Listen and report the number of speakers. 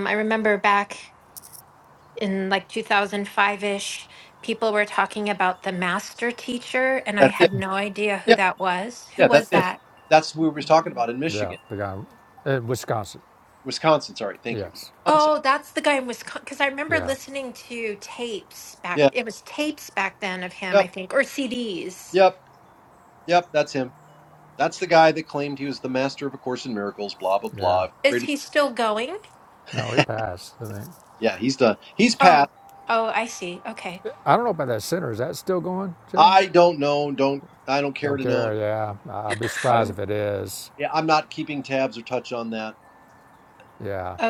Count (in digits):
3